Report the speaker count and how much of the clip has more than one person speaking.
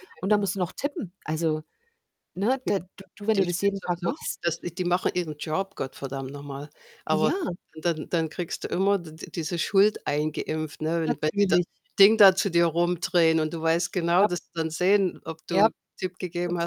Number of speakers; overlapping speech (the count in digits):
2, about 12%